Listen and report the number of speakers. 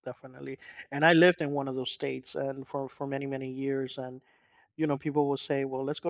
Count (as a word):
one